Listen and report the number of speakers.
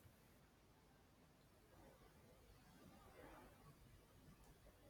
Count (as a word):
zero